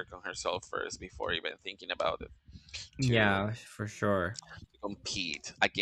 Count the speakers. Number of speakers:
2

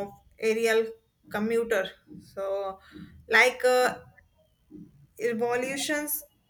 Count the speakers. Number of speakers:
1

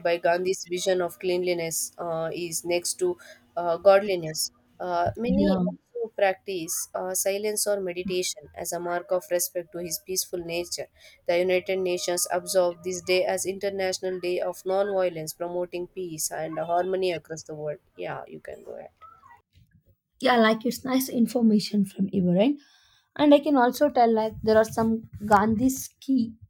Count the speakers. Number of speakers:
2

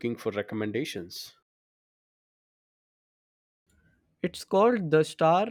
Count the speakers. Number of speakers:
2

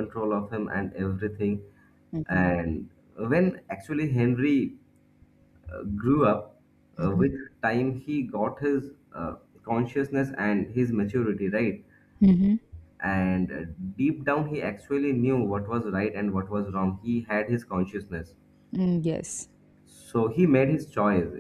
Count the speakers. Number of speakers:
2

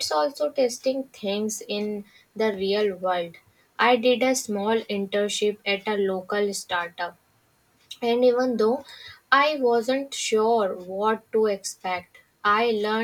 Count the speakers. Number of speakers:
1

